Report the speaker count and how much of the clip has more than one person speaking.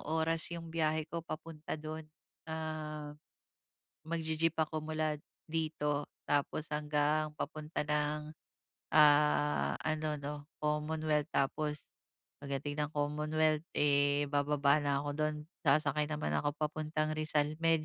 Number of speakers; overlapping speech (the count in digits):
1, no overlap